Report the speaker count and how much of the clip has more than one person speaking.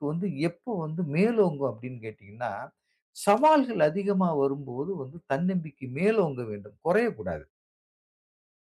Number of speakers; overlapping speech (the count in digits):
1, no overlap